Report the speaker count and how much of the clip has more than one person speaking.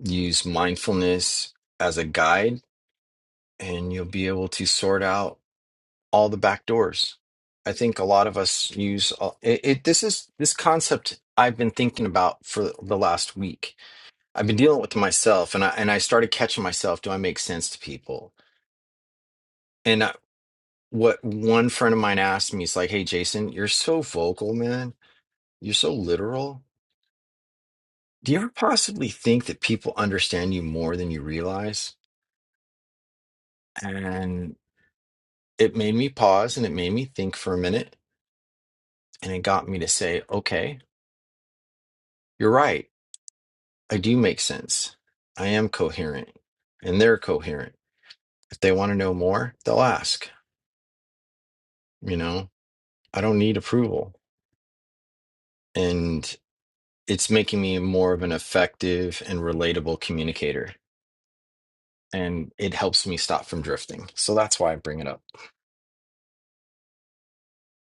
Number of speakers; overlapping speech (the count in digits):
1, no overlap